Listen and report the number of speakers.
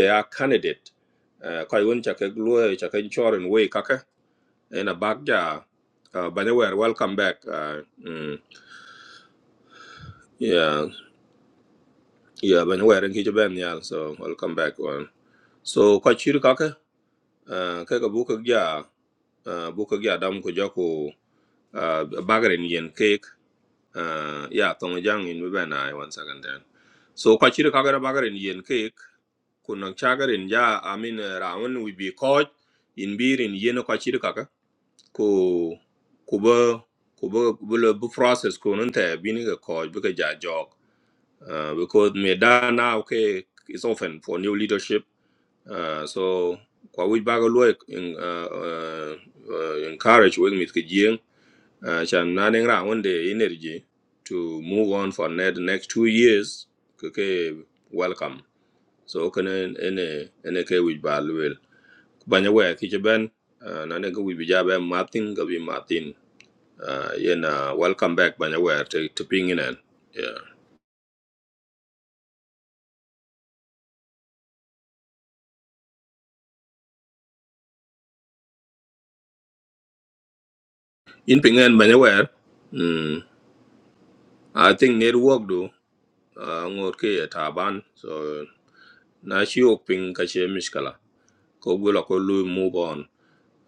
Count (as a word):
one